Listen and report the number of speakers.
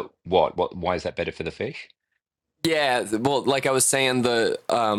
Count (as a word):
two